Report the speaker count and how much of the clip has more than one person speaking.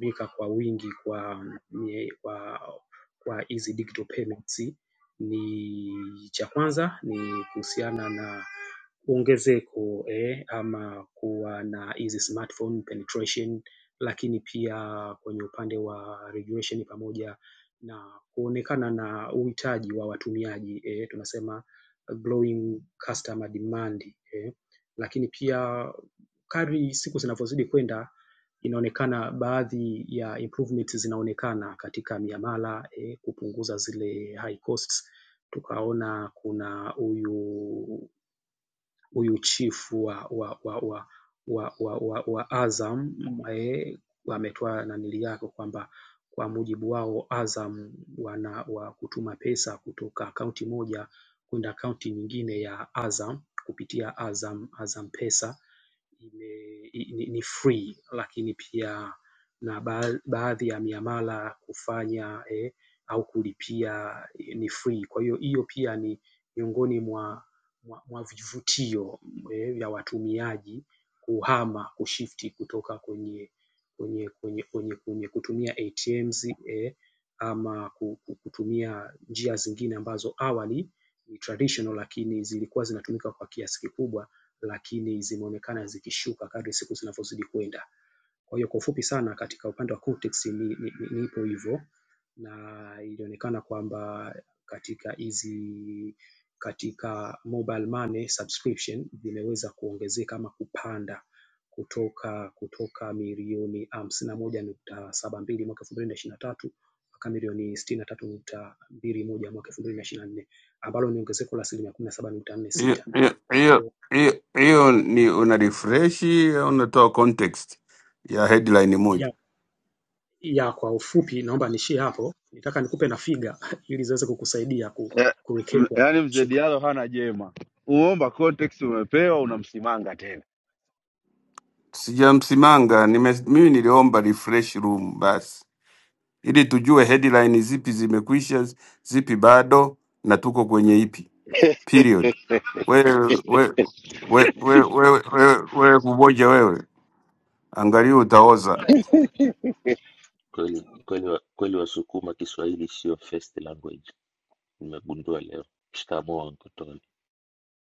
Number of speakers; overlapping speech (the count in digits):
4, about 1%